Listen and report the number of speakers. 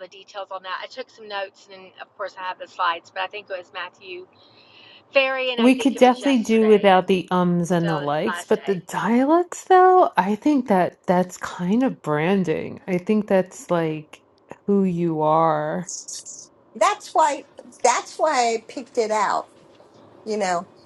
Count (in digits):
3